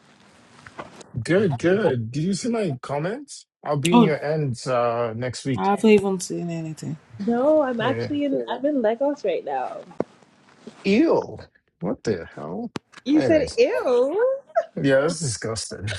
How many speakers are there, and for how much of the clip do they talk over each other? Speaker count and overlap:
3, about 8%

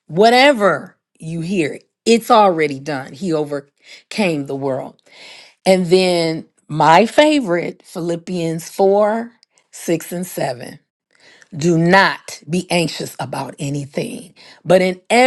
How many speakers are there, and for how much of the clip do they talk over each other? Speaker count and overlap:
1, no overlap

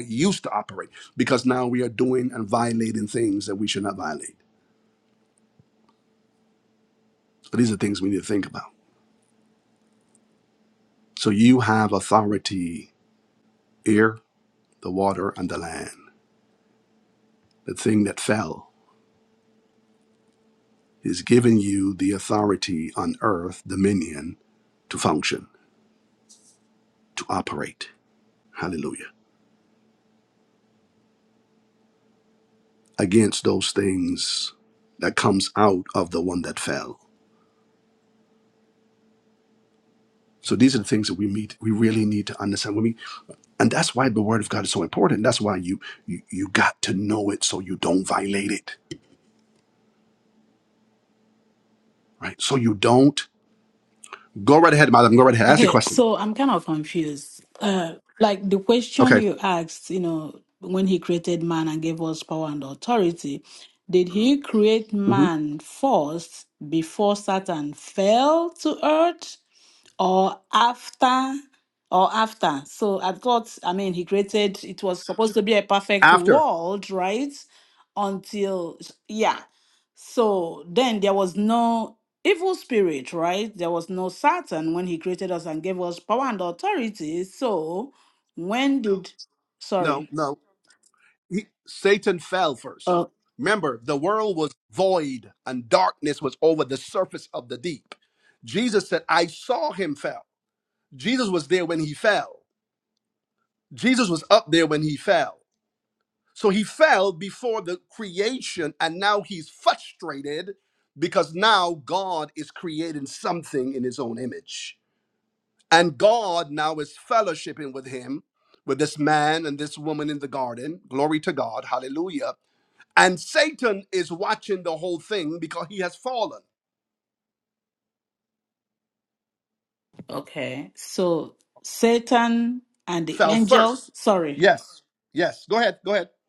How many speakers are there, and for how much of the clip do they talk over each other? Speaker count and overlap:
2, about 2%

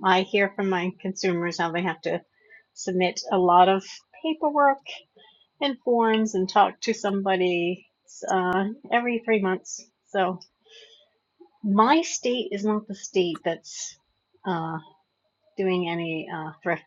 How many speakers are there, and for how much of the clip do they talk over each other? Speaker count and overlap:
1, no overlap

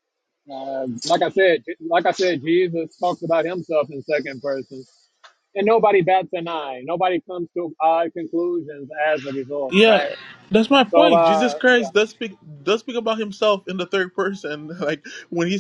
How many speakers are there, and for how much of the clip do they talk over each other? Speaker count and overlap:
2, about 9%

